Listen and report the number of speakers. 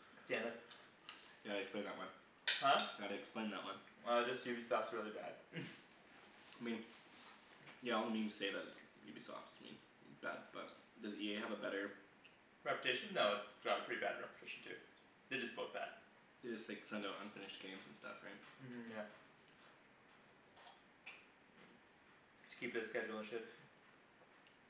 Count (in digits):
2